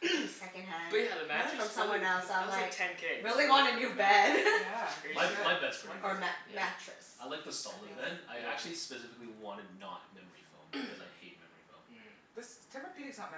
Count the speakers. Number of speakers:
four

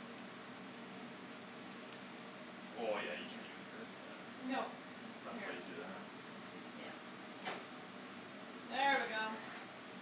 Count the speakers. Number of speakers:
two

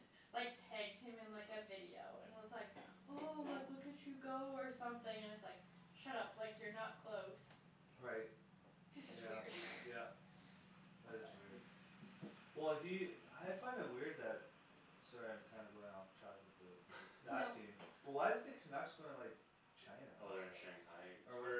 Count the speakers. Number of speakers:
three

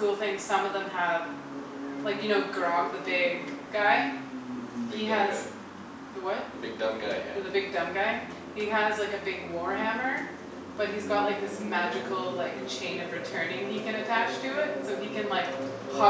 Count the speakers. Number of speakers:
two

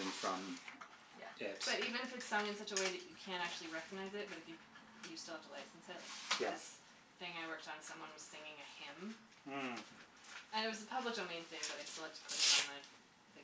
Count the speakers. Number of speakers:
two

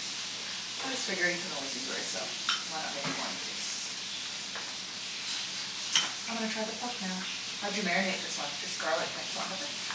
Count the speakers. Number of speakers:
one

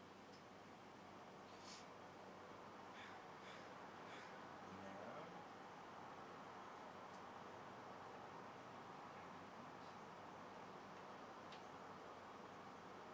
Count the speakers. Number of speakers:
one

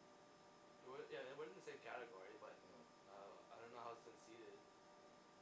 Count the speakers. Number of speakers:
one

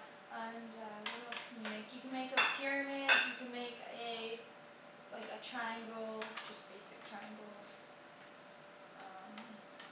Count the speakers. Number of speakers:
one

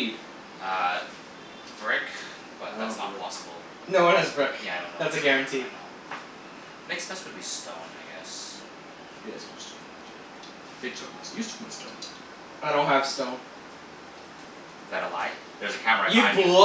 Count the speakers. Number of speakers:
three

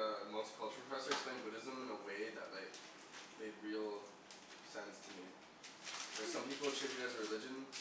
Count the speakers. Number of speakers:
one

